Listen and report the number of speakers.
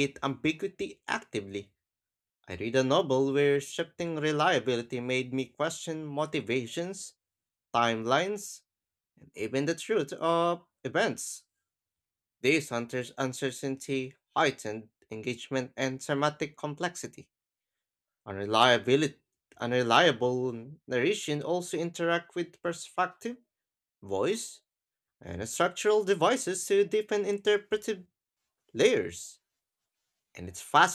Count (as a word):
one